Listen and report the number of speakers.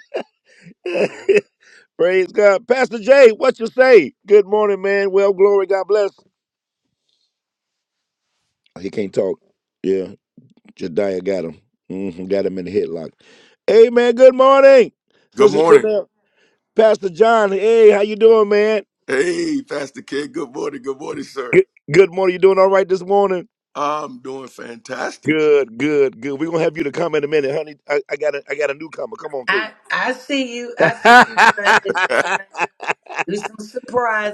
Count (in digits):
3